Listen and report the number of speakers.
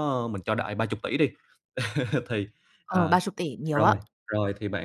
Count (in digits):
2